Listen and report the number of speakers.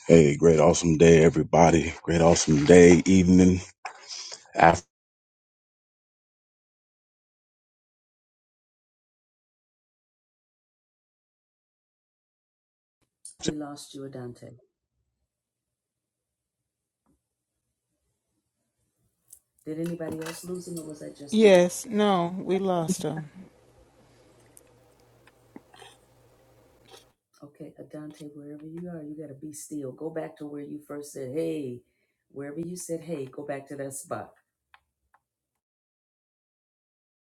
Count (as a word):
three